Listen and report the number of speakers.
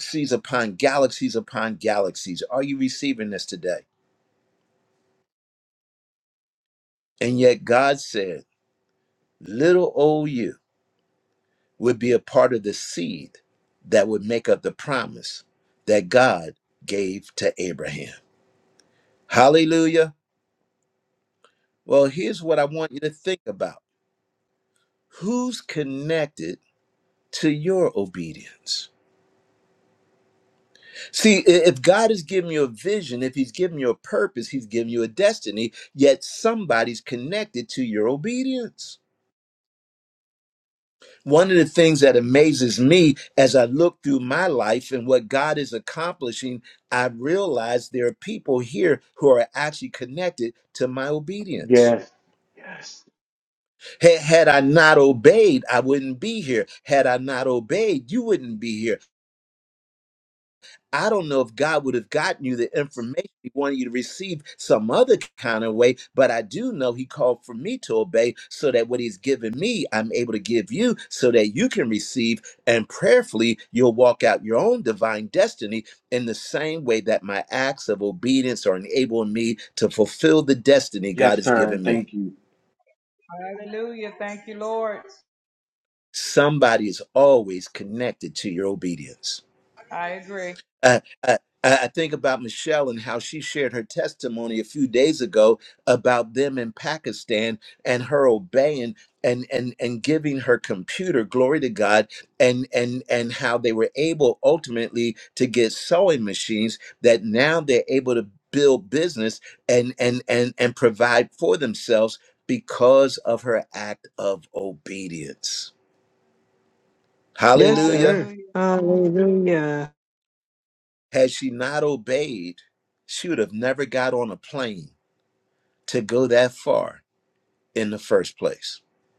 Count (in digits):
4